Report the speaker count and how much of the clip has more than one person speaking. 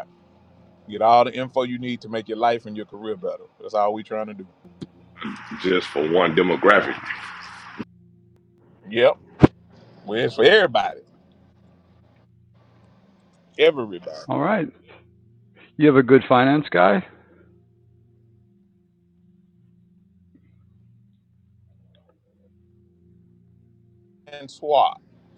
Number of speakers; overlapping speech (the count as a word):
three, no overlap